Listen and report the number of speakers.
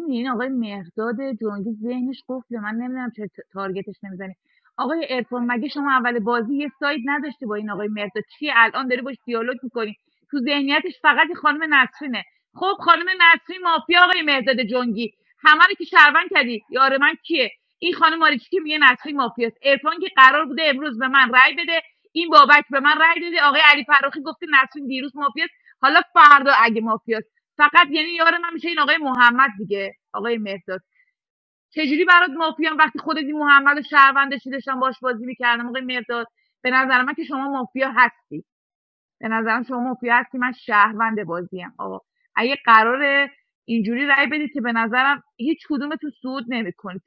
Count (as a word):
one